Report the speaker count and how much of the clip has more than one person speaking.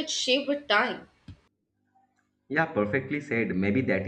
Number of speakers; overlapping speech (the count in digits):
2, no overlap